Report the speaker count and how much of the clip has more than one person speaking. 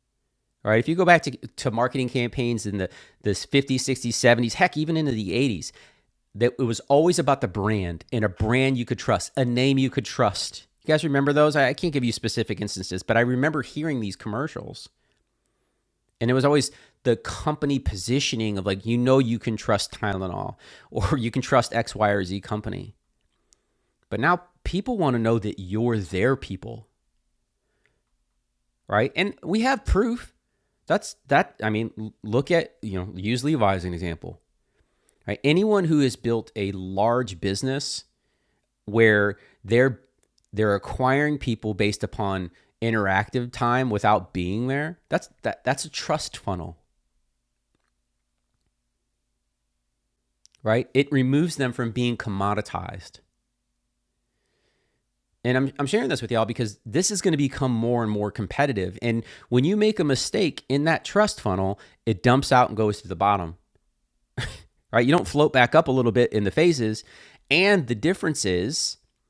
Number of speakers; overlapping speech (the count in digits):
1, no overlap